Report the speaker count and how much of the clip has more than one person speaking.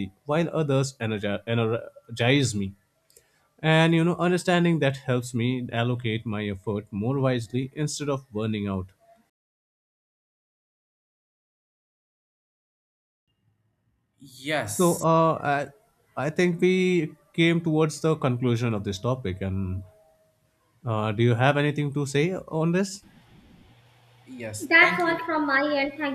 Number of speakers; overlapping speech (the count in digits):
3, about 2%